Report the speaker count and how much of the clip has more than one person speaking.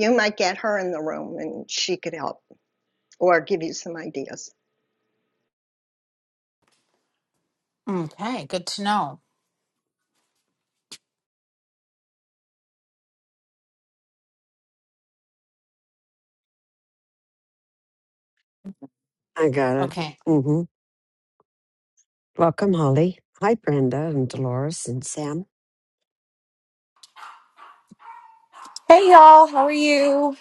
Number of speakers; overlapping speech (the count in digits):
4, under 1%